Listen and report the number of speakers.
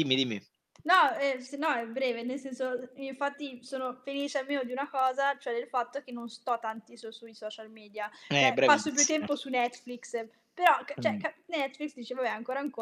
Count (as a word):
two